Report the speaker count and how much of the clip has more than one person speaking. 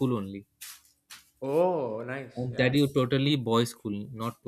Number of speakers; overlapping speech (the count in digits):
2, about 8%